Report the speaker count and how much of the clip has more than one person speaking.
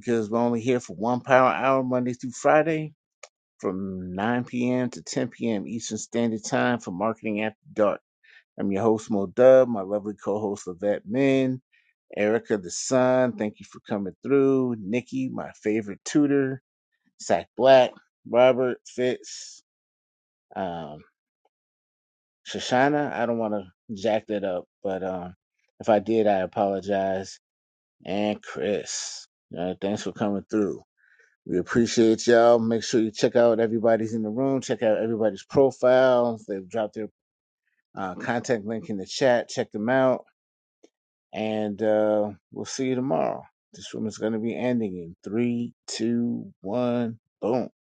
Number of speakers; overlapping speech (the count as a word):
one, no overlap